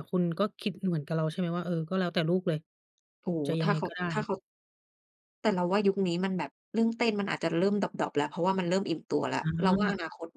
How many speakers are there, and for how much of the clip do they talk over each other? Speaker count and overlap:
2, about 8%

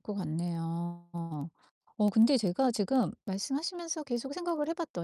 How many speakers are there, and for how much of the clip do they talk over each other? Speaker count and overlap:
1, no overlap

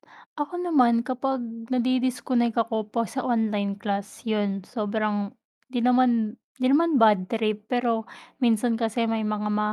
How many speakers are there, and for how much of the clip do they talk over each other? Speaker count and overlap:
1, no overlap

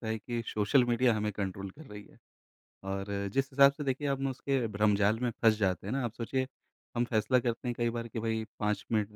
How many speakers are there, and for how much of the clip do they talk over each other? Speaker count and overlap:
1, no overlap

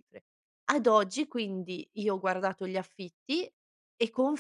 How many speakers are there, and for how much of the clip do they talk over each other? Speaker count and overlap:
1, no overlap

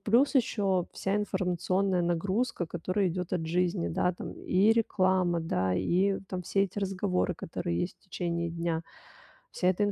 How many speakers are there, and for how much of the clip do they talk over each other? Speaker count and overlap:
1, no overlap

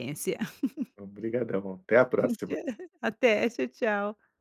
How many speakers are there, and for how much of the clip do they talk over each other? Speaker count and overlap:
2, no overlap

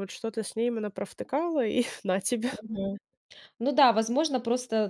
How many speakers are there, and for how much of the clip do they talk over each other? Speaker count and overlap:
2, under 1%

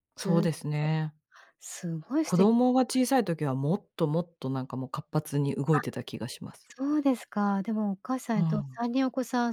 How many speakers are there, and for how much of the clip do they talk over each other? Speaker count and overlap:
2, about 9%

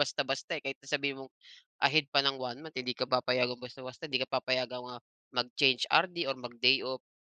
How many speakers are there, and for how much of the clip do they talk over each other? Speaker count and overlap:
1, no overlap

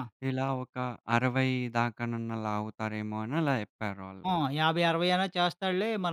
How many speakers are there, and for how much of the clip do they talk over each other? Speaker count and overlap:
2, under 1%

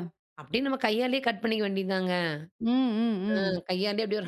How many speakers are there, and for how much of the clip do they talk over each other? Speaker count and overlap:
2, about 6%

